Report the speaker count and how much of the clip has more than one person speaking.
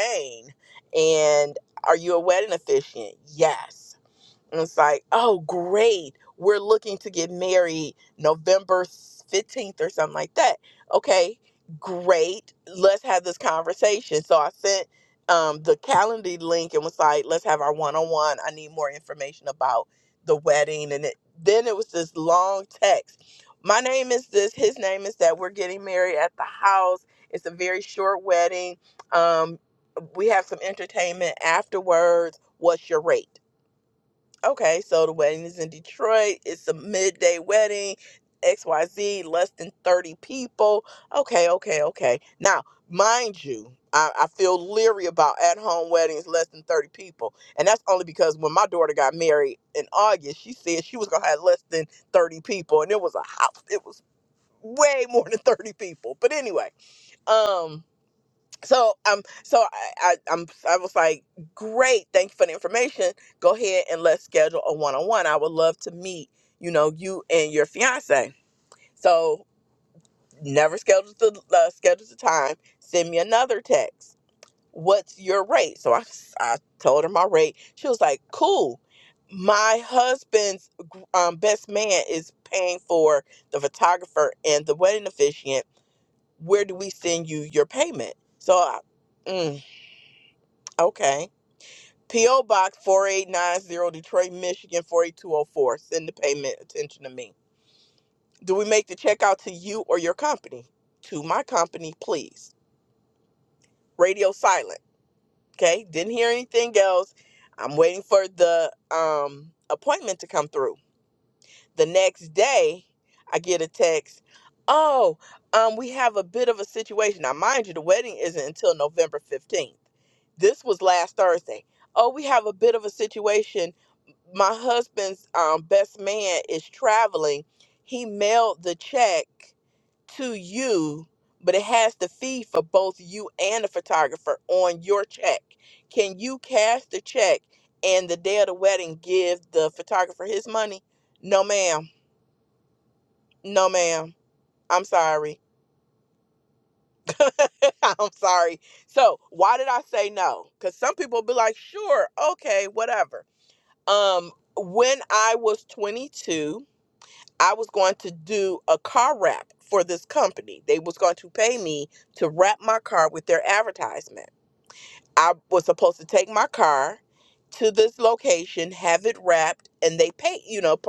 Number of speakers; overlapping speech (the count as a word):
one, no overlap